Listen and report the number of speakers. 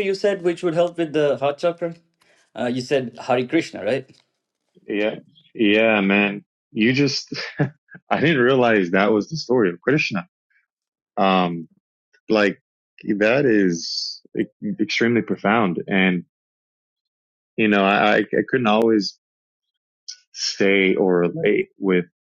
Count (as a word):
two